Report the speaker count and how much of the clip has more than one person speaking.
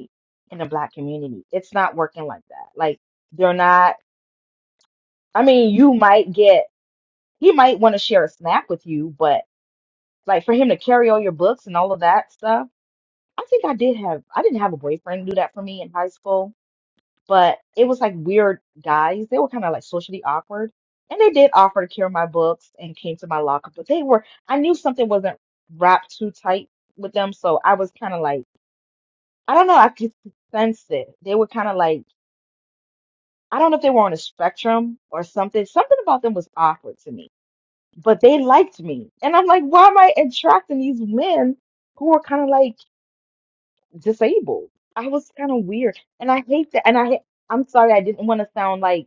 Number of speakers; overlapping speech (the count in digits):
1, no overlap